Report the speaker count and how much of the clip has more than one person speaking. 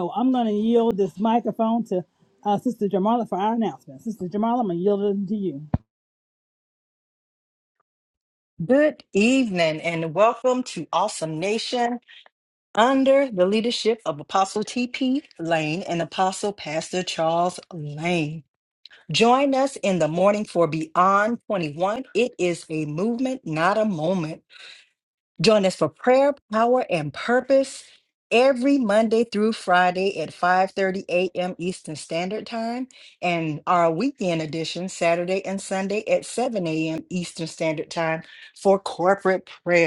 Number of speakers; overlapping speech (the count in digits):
2, no overlap